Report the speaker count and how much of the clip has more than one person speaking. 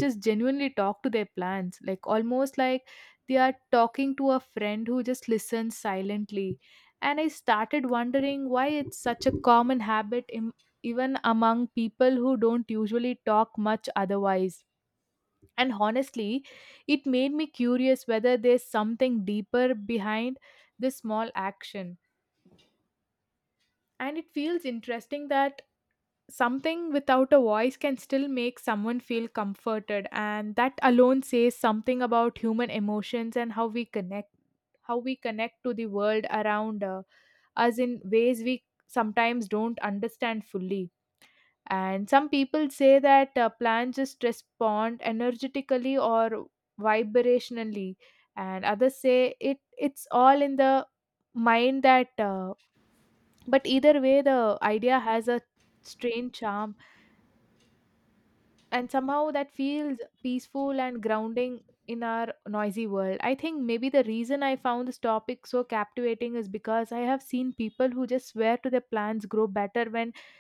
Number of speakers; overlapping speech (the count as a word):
one, no overlap